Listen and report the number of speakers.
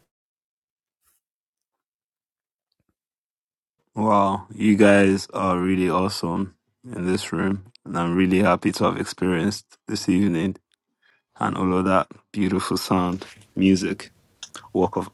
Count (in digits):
1